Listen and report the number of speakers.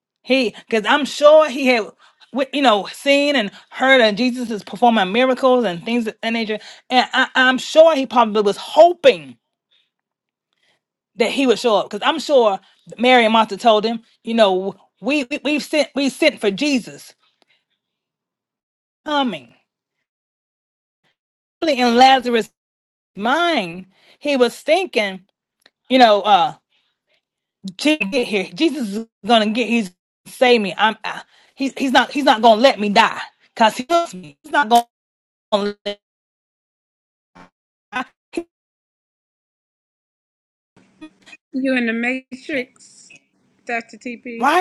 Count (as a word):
two